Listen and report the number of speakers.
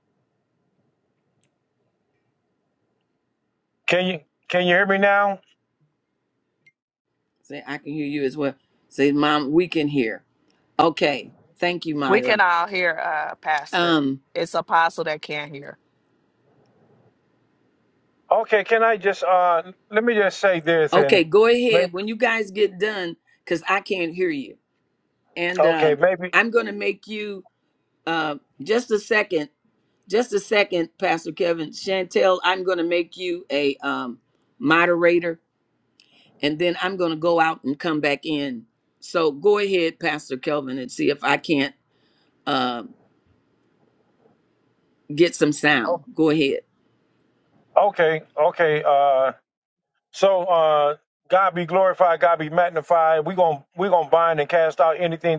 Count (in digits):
3